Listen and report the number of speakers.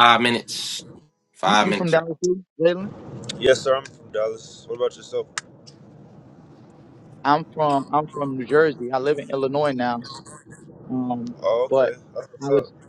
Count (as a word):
three